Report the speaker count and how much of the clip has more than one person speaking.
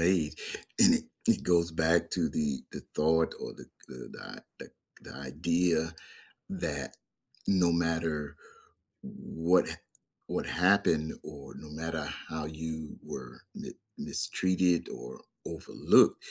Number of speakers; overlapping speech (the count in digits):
1, no overlap